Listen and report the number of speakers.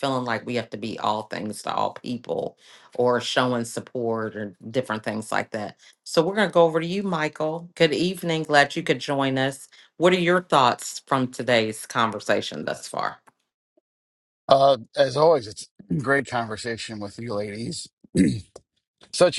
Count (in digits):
2